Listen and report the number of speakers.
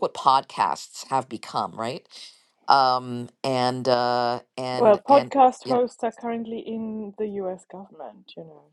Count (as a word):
two